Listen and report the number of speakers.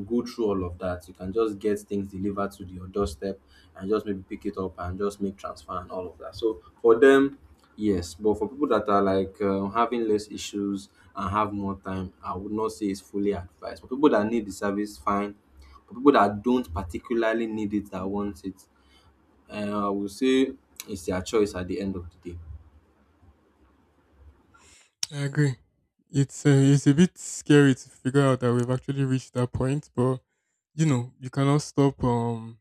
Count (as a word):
two